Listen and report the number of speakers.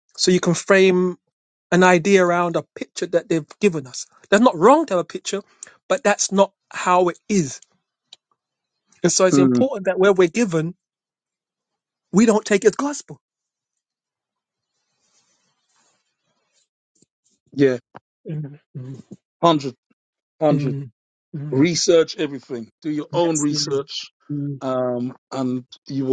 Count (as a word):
two